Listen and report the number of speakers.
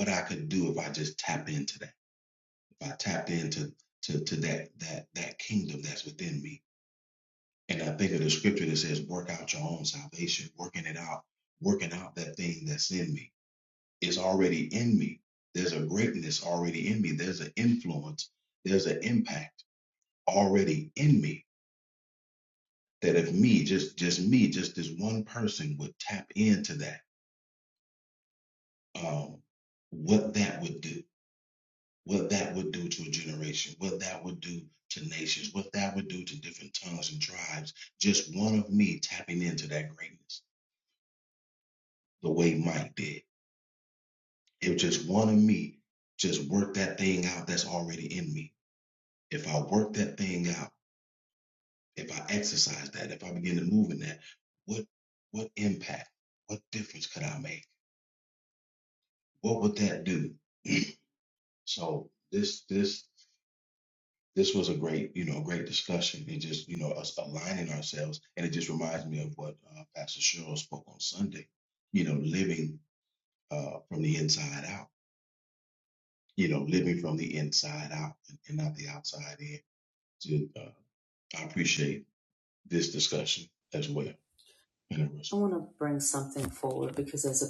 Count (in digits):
2